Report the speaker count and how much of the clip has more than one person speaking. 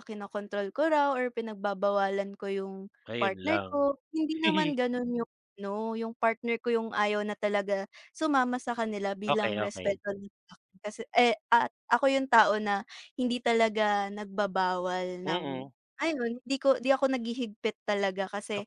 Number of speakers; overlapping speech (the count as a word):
two, about 8%